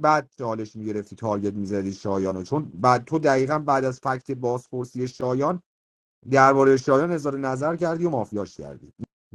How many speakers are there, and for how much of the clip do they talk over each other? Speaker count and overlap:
1, no overlap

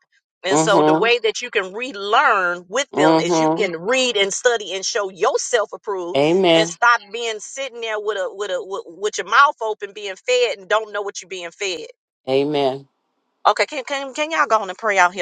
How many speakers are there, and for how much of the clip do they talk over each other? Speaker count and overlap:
2, about 9%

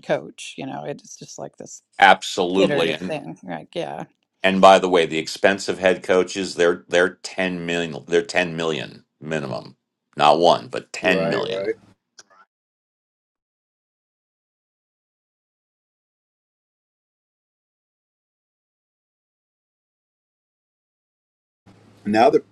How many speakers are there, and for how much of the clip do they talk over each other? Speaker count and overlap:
3, about 5%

